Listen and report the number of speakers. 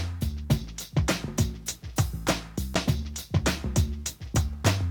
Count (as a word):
zero